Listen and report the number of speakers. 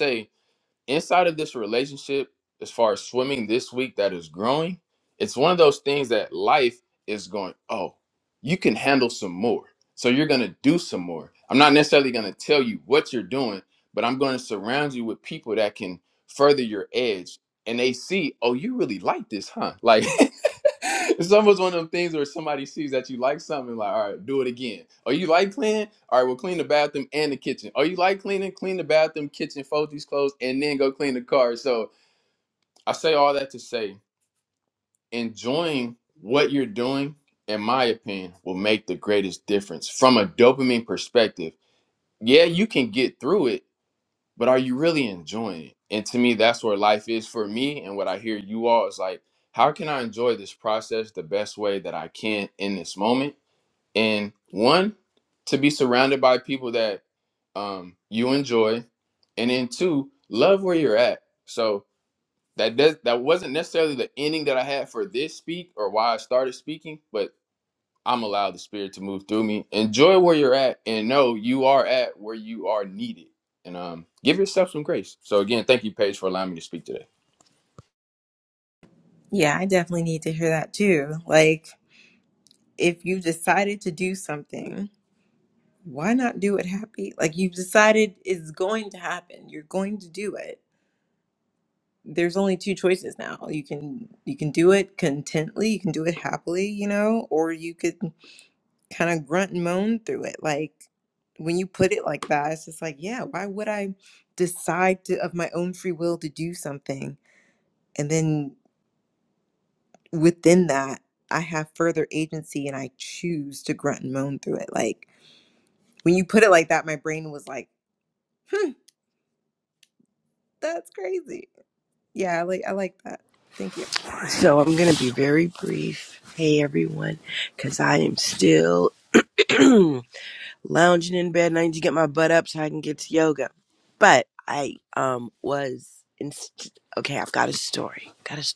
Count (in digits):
3